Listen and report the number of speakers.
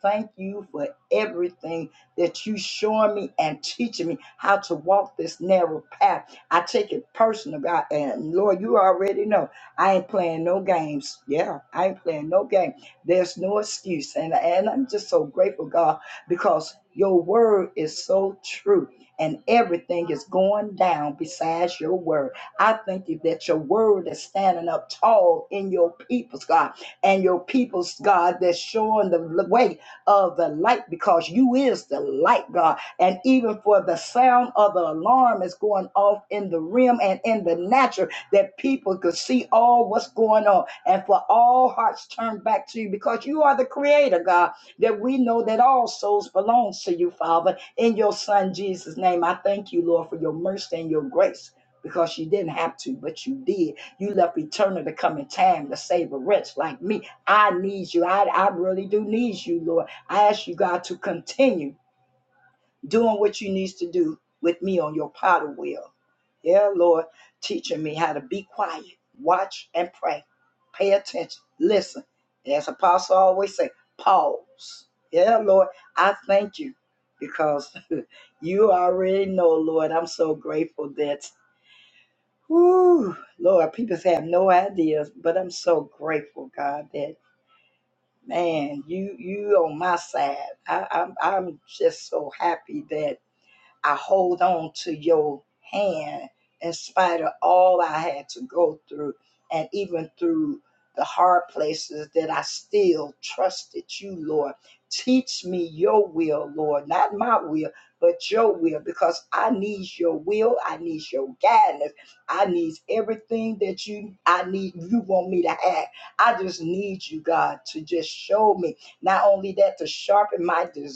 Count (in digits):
1